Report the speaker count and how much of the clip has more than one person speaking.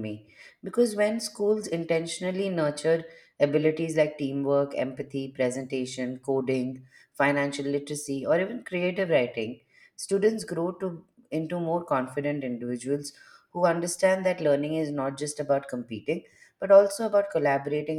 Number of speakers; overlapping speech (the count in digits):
1, no overlap